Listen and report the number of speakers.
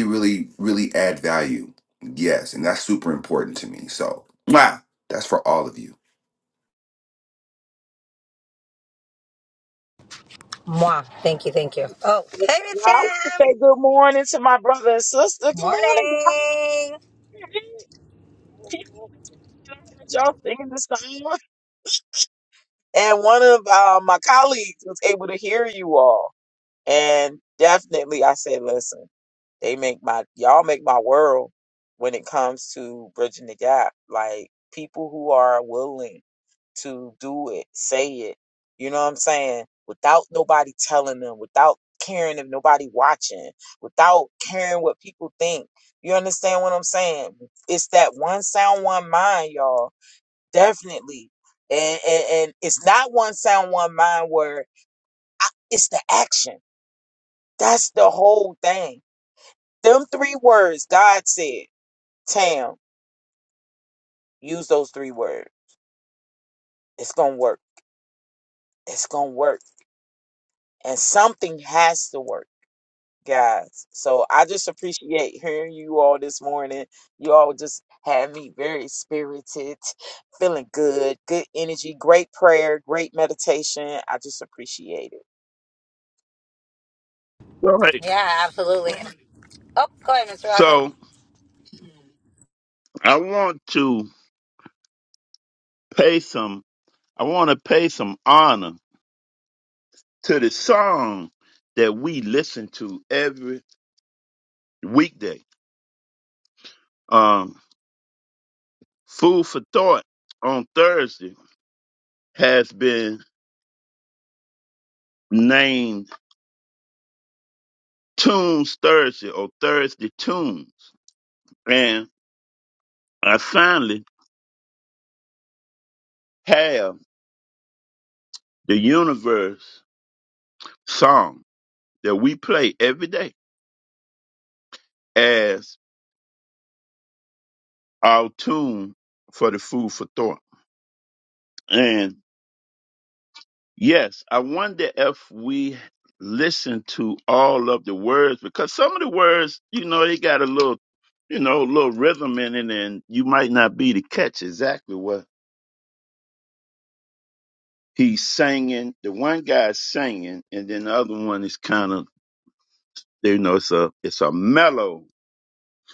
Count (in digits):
4